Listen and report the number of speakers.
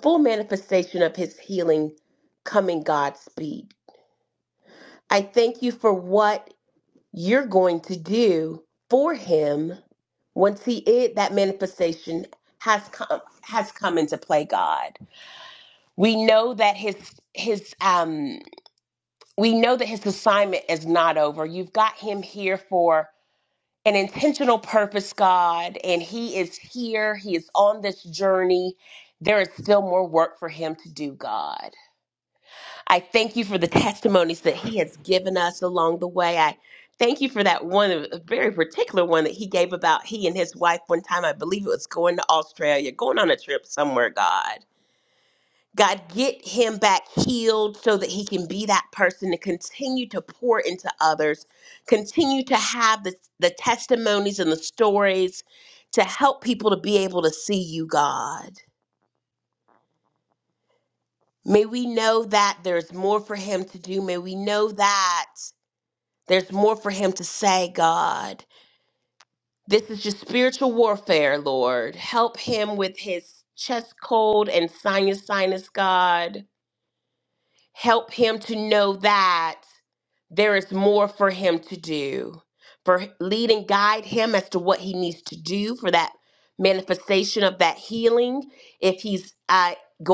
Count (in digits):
1